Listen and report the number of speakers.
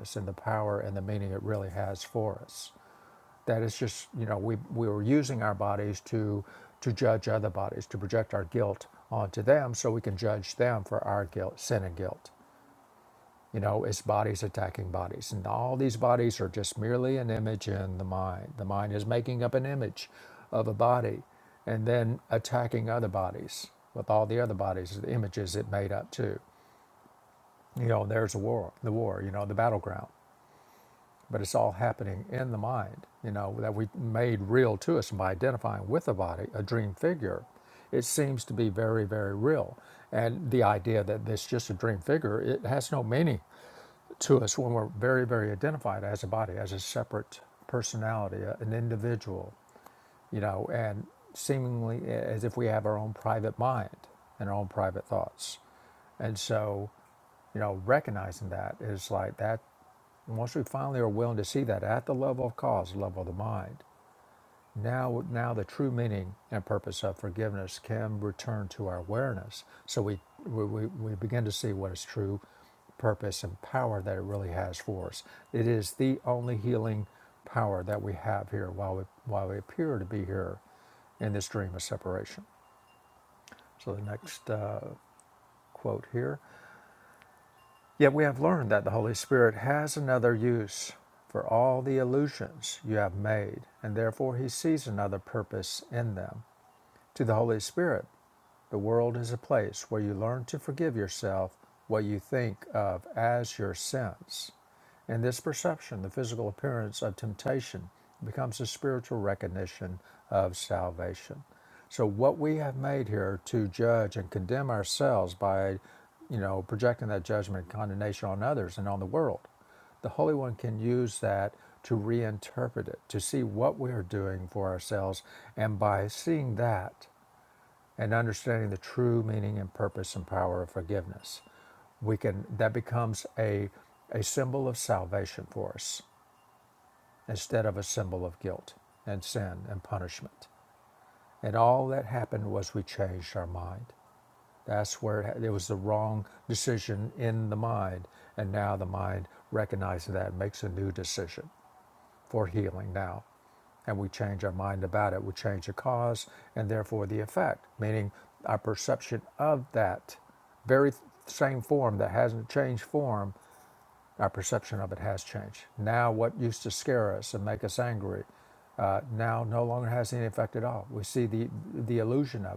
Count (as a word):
one